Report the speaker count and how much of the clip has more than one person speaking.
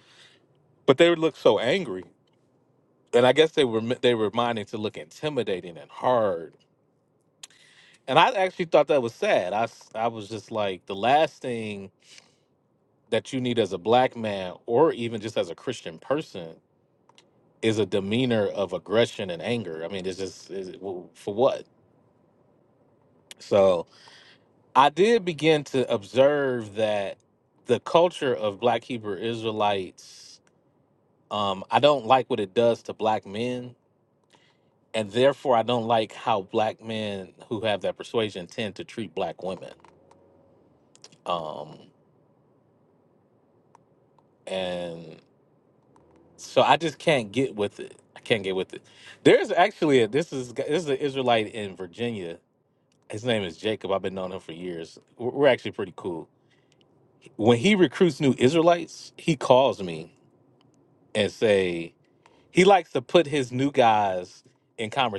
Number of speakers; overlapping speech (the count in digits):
1, no overlap